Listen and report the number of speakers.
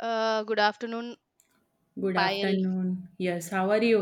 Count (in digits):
2